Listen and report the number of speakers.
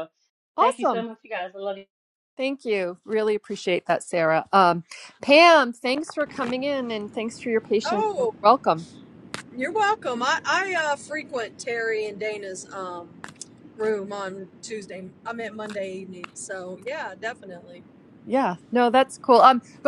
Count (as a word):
three